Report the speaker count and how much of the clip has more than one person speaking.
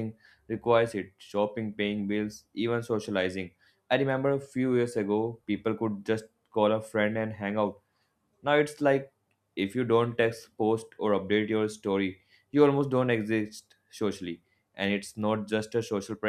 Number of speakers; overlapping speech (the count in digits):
1, no overlap